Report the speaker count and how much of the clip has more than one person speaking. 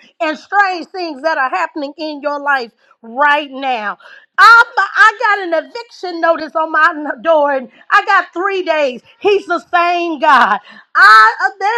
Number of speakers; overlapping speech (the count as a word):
one, no overlap